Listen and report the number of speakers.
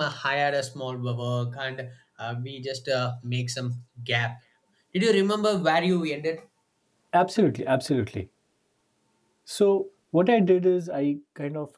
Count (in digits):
2